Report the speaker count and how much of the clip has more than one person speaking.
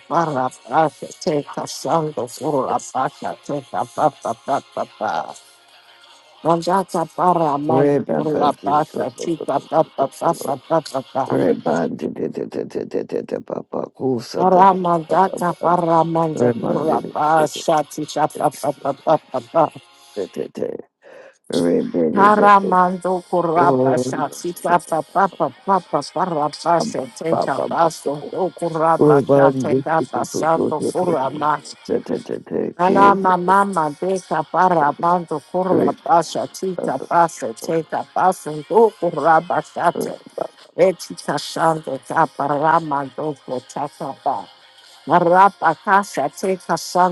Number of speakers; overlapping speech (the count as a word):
two, about 17%